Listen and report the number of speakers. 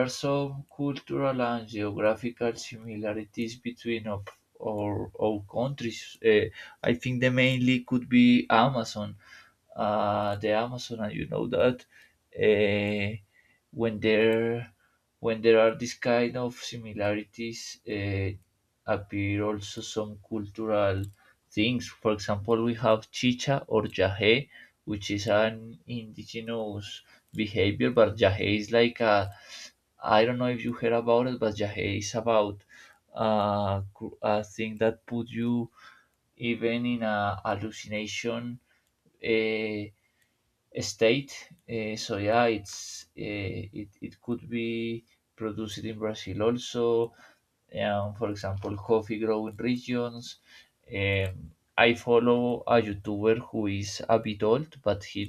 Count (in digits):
1